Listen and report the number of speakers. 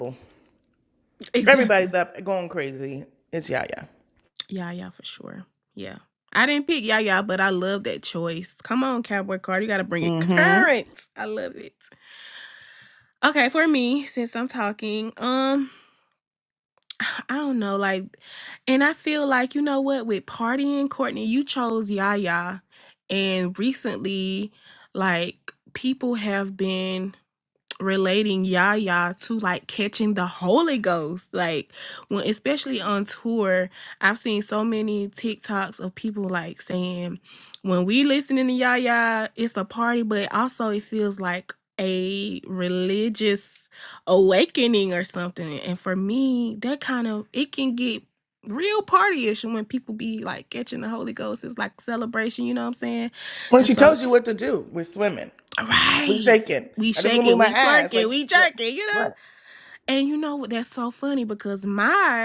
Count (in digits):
2